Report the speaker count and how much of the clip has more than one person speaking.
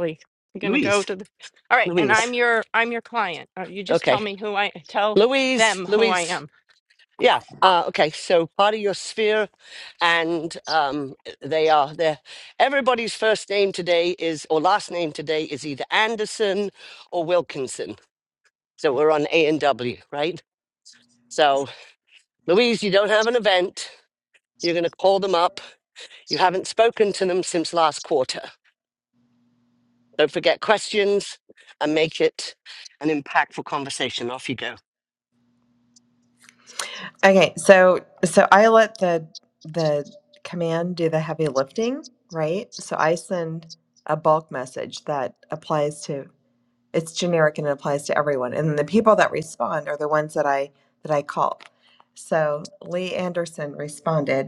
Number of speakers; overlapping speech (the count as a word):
three, about 4%